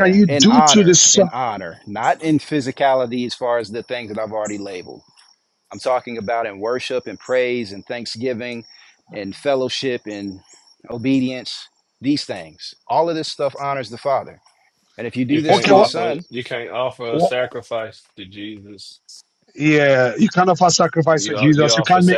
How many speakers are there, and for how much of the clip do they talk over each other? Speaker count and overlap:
three, about 16%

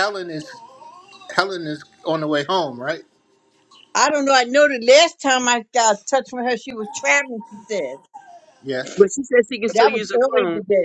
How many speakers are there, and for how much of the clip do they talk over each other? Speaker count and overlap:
three, about 9%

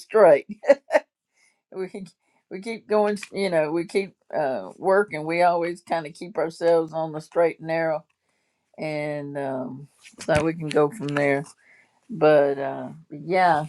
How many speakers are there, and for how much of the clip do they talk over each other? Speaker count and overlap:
one, no overlap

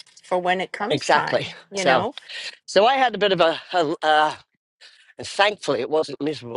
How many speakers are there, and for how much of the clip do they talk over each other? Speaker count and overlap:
two, about 17%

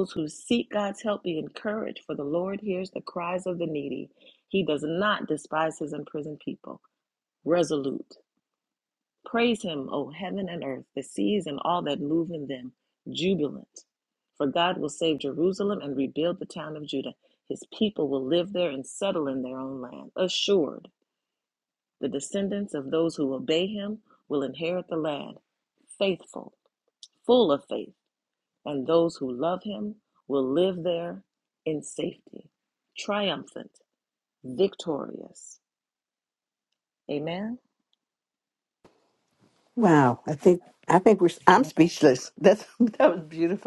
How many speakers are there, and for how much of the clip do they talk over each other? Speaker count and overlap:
two, no overlap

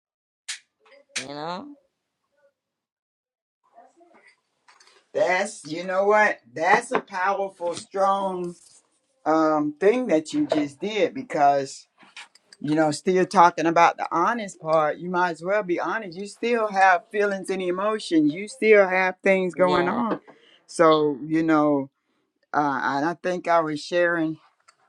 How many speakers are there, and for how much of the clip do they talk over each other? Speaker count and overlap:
two, about 2%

